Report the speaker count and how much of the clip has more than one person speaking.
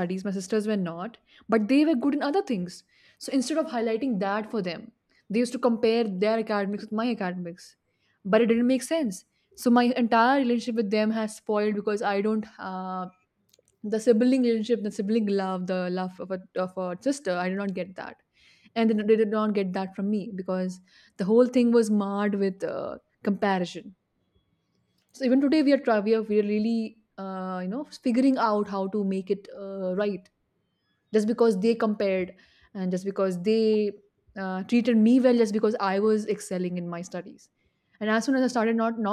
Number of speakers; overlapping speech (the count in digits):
1, no overlap